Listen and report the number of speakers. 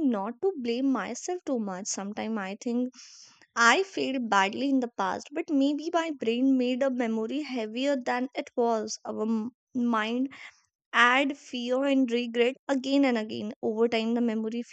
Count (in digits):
1